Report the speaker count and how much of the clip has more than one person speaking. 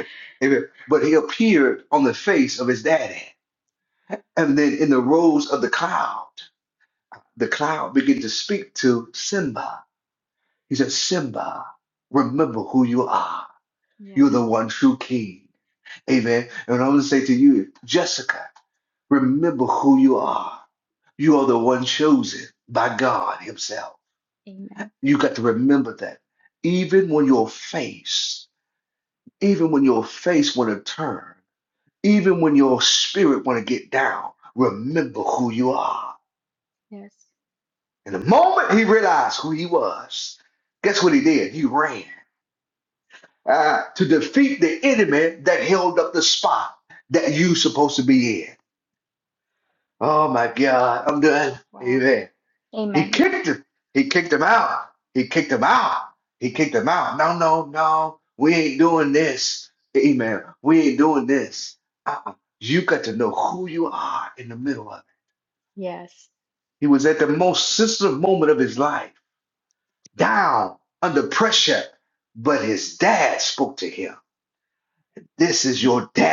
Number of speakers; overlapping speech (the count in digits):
2, about 1%